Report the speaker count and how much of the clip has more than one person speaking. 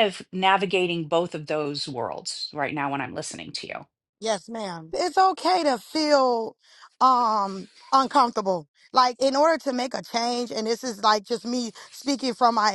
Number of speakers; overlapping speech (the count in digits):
2, no overlap